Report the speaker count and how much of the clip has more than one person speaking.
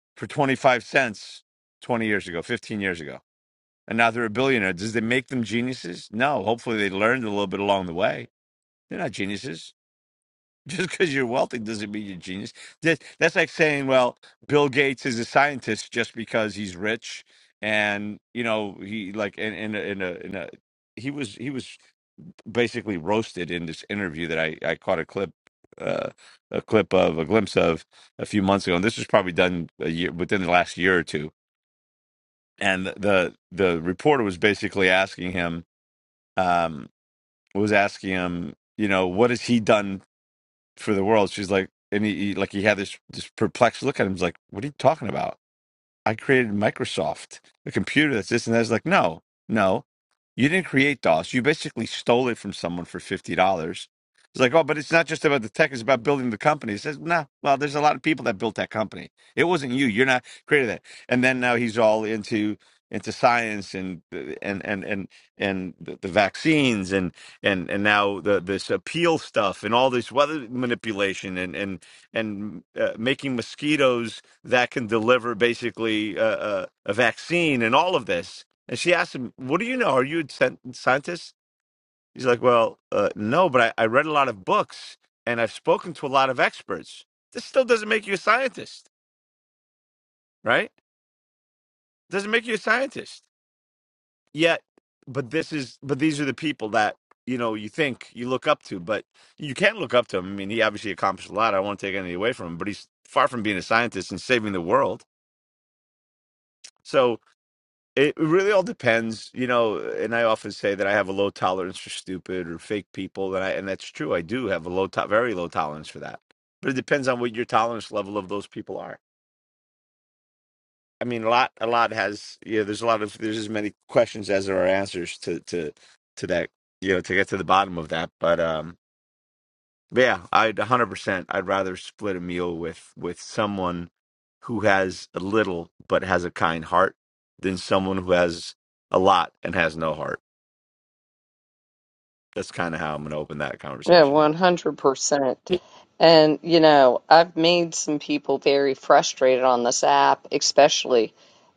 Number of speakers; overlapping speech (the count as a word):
two, under 1%